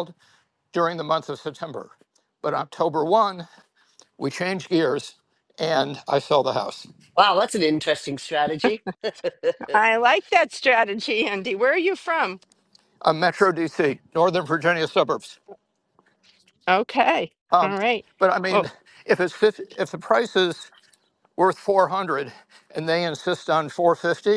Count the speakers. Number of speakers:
three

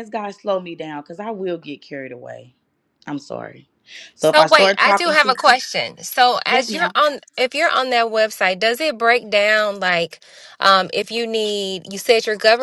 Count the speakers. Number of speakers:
two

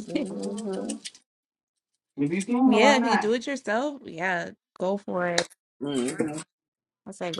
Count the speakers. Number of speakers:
three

